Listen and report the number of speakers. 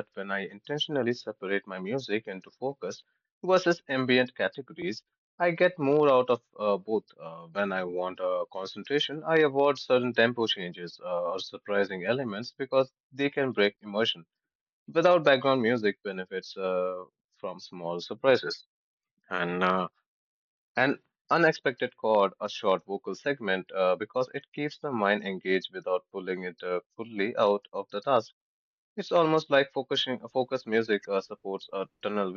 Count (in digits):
1